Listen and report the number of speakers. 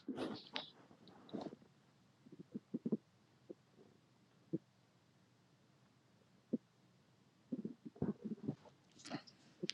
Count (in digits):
0